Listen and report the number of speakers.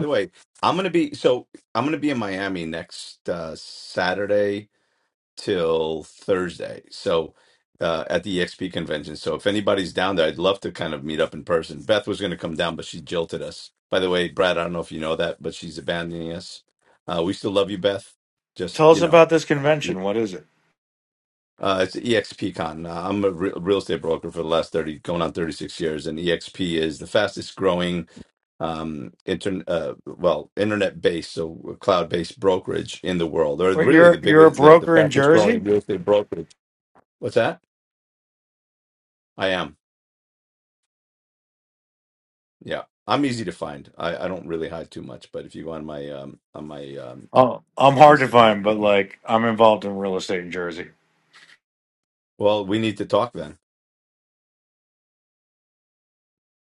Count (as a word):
two